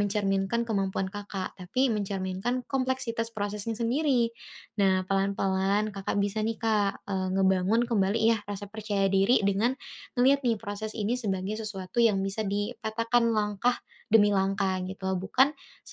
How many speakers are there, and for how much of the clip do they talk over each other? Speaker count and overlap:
1, no overlap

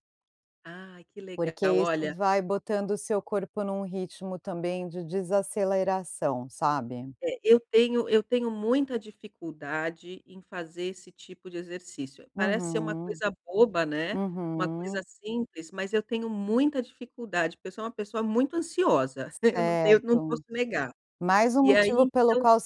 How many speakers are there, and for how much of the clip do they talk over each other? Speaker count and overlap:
2, about 15%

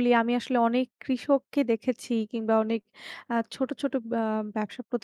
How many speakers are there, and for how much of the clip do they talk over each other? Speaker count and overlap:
1, no overlap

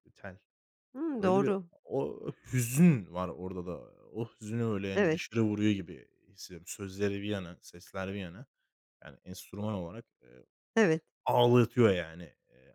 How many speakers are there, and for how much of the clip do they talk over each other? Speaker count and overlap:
2, about 5%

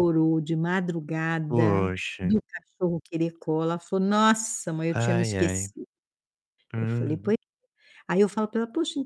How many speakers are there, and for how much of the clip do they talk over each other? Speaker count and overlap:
2, about 16%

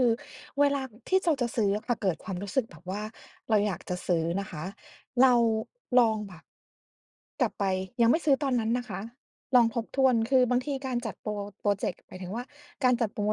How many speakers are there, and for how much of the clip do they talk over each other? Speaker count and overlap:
1, no overlap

